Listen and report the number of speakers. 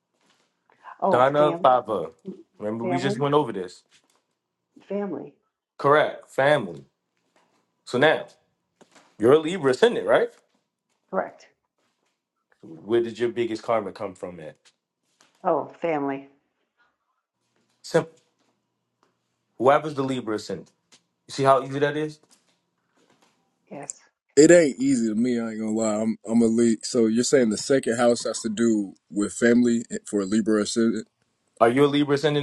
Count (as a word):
three